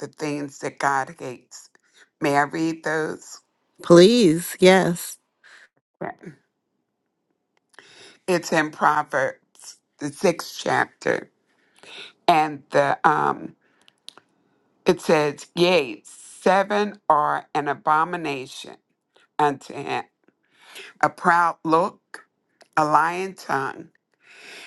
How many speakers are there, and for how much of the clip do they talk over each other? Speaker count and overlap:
2, no overlap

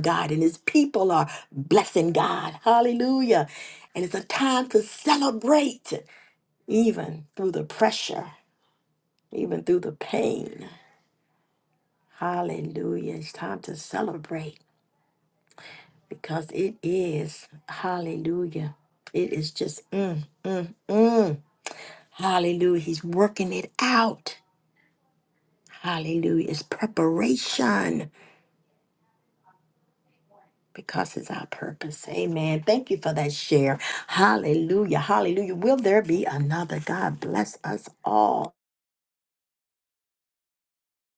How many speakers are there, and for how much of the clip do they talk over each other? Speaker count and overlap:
1, no overlap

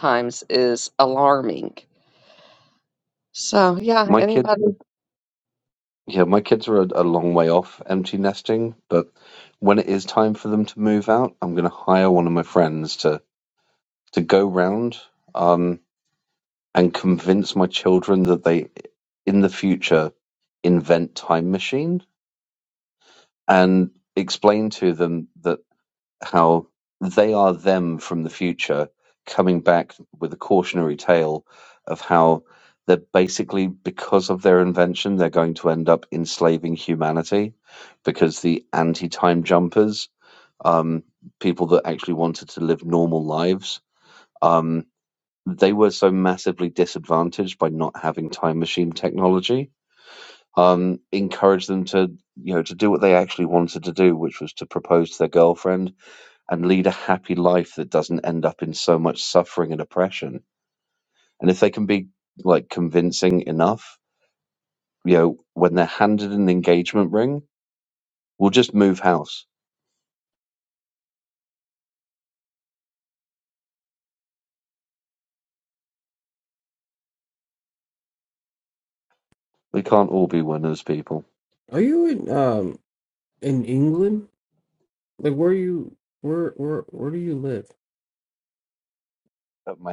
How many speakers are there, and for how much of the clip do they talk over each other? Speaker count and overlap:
3, under 1%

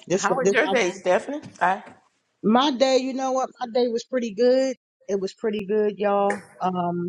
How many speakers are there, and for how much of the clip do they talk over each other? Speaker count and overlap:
2, about 6%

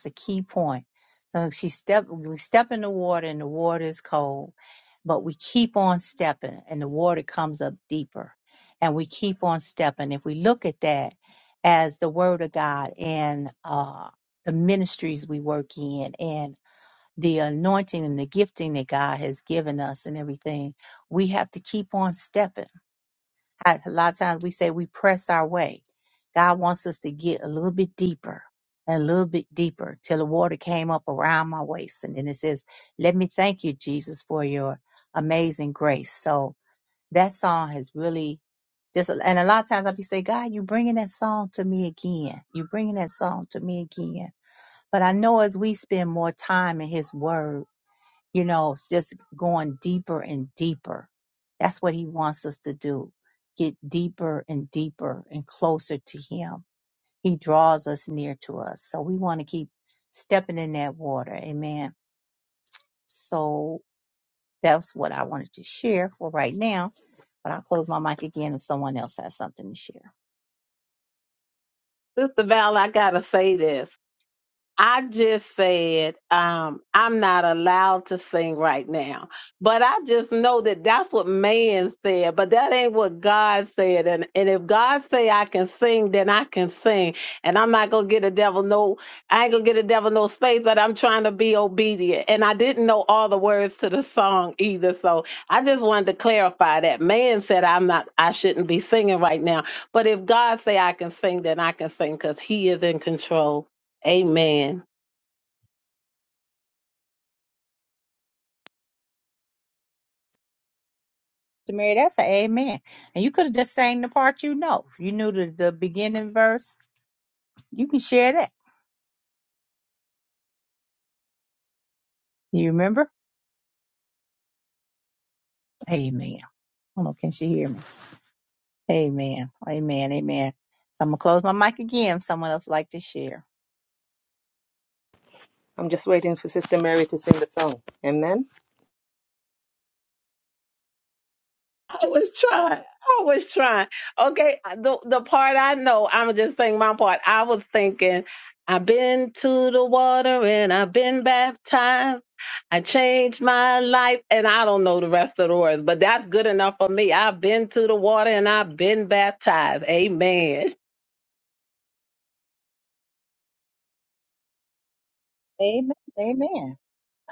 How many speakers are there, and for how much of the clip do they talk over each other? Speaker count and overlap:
3, no overlap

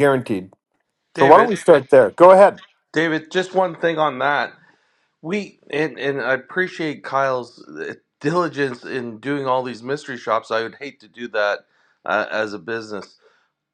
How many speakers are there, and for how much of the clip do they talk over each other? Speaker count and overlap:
2, about 3%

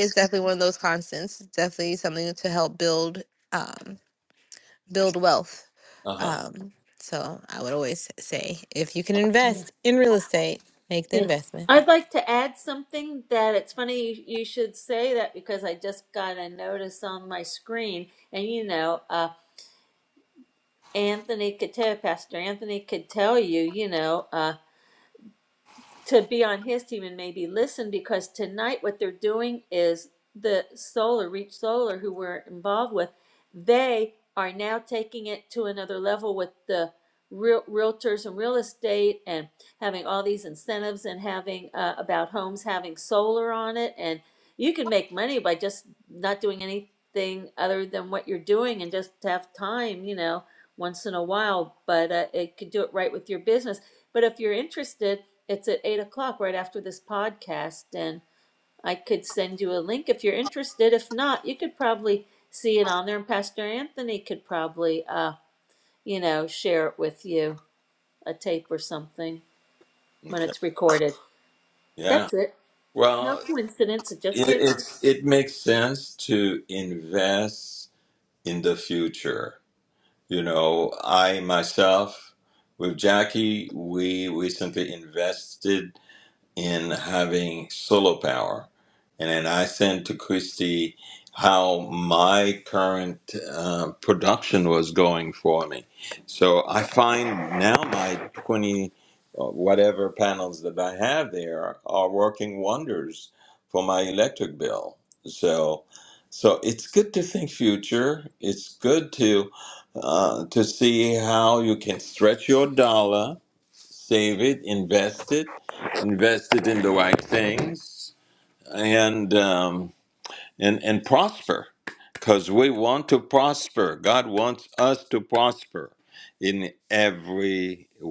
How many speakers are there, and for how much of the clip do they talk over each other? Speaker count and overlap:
3, about 2%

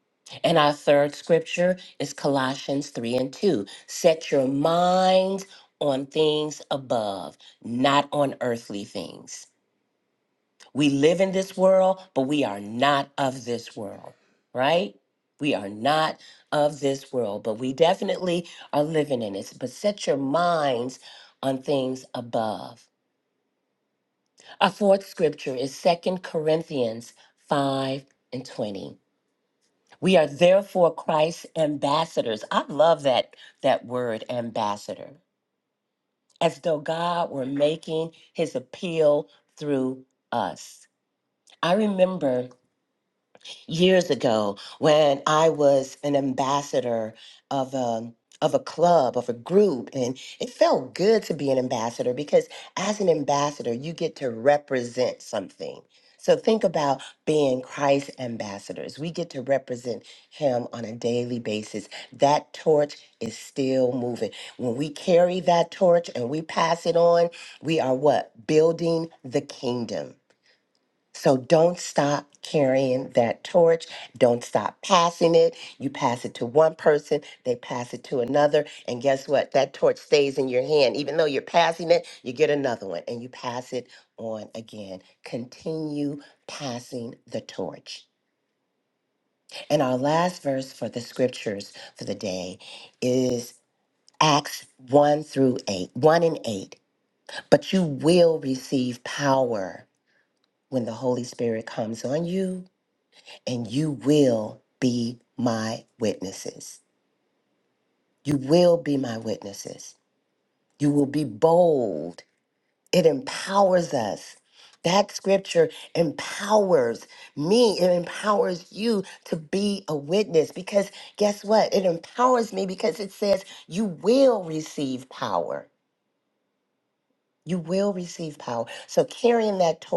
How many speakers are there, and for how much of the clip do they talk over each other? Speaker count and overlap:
1, no overlap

